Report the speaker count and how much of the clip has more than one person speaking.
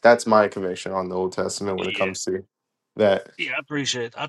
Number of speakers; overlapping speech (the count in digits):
2, about 9%